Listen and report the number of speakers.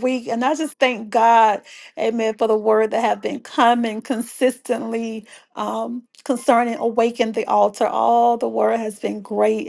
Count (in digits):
1